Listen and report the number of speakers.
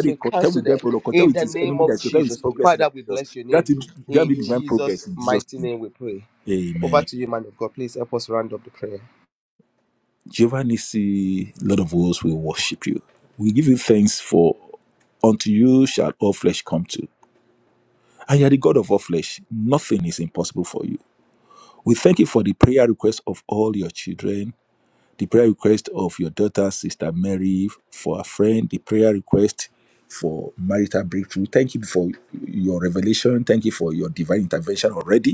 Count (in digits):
2